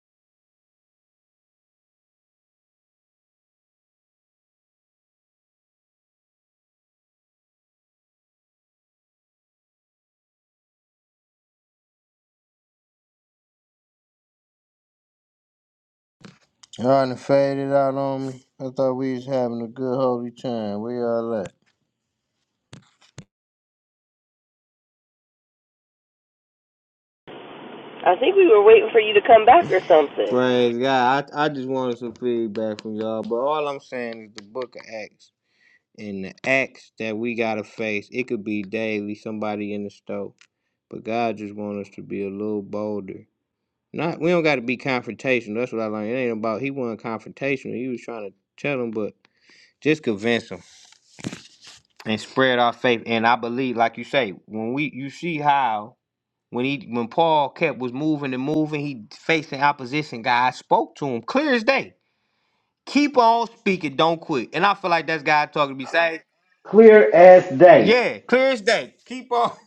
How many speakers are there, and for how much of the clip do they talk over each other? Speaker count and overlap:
3, under 1%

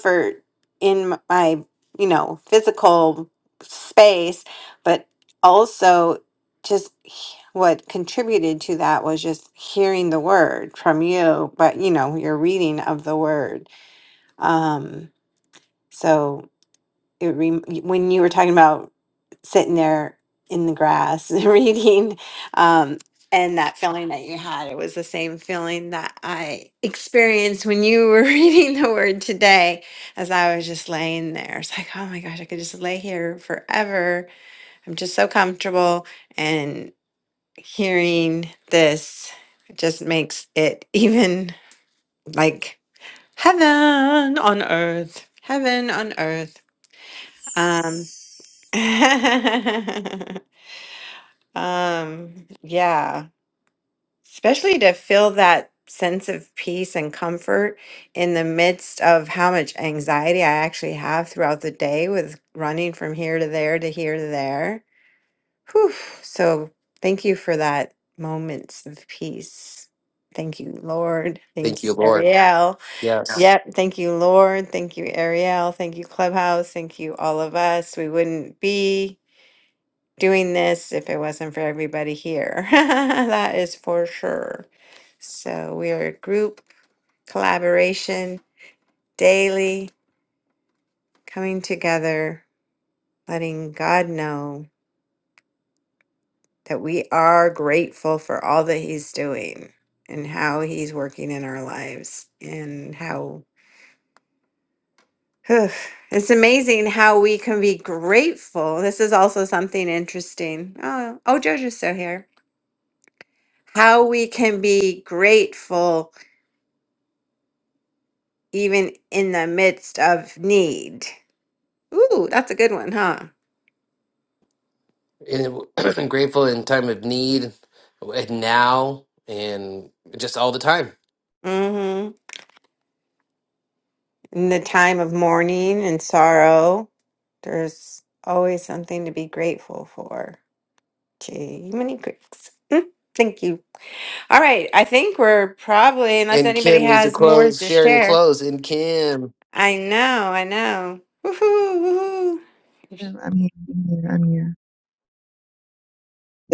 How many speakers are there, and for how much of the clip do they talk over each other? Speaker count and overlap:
3, about 2%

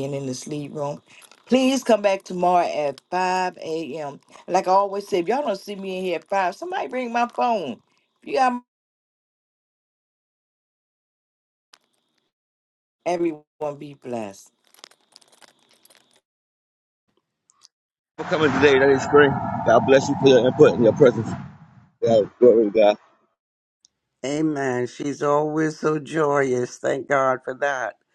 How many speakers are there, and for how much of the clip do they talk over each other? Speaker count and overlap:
3, no overlap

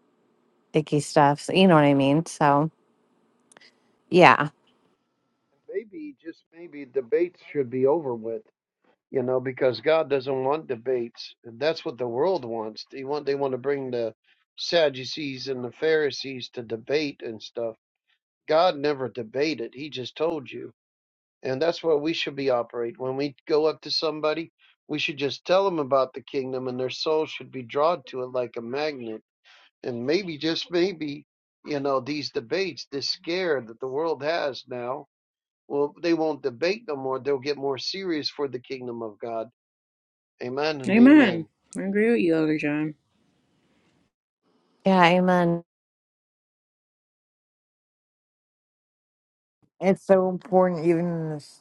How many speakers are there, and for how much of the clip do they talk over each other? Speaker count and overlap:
4, about 1%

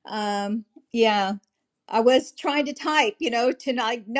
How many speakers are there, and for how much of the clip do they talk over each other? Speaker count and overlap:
1, no overlap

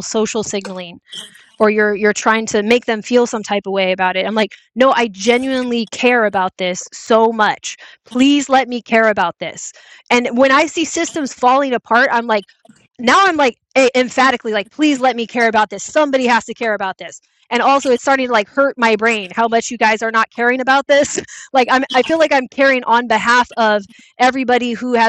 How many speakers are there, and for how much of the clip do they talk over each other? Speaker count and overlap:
1, no overlap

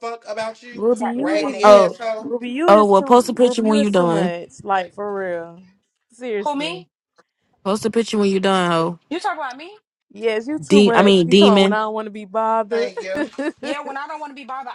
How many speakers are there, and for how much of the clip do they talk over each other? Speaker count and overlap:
4, about 33%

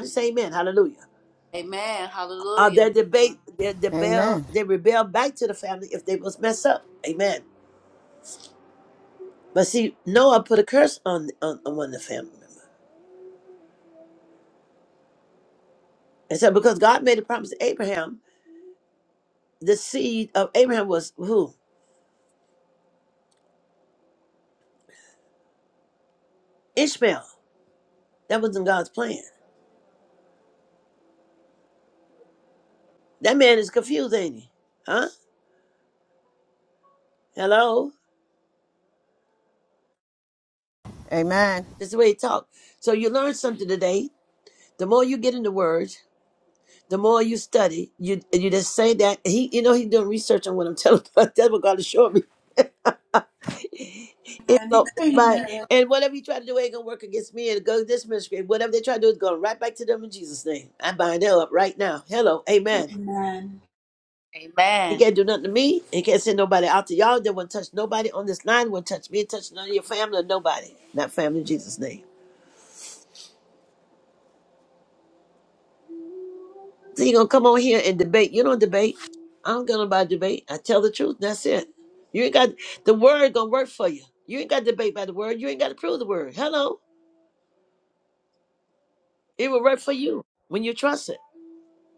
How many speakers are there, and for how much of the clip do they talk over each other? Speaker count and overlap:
4, about 3%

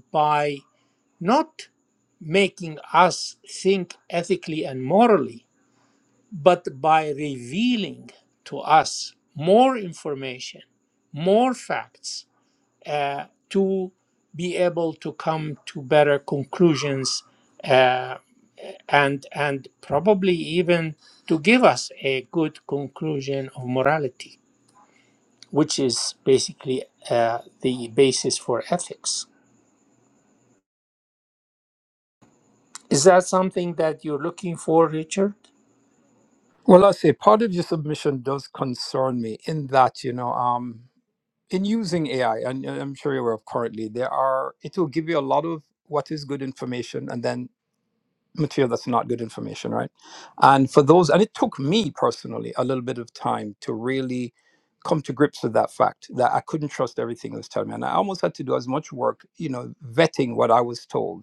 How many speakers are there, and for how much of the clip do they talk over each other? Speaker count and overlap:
2, no overlap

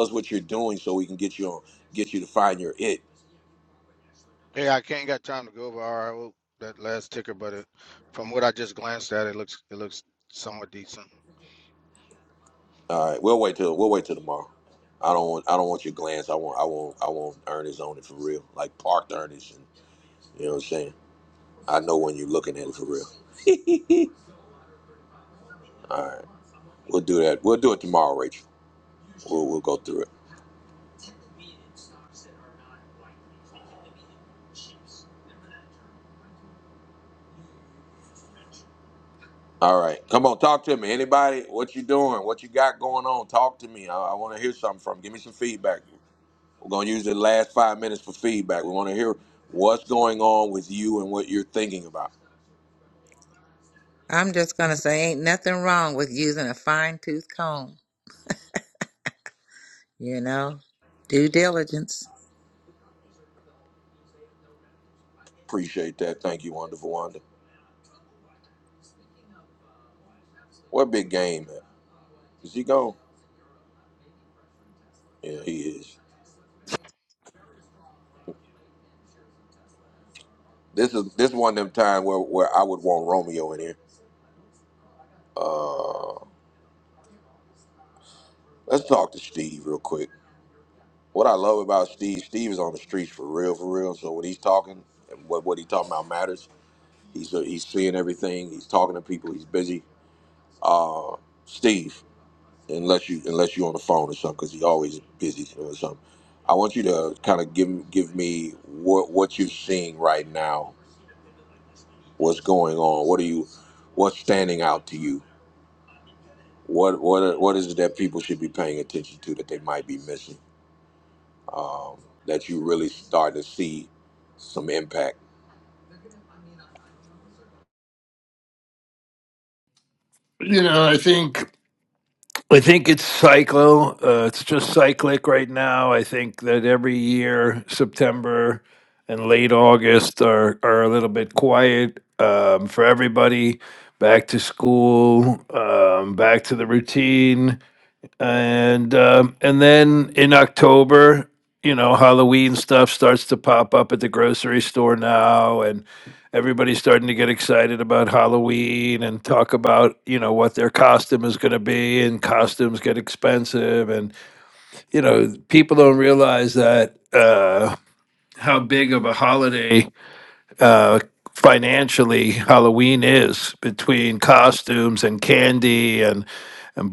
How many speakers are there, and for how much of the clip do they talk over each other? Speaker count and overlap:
4, no overlap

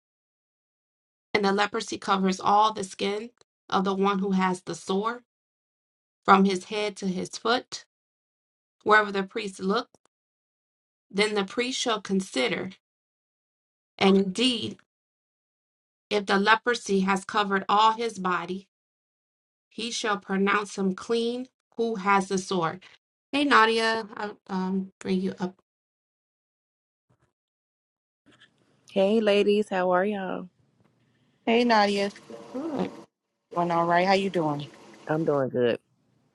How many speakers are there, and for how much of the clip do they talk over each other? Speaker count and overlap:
3, no overlap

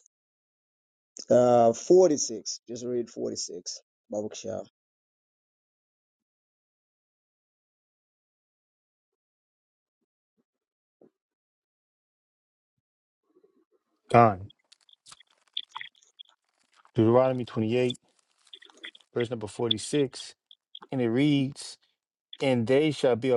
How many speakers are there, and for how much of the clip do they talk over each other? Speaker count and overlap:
2, no overlap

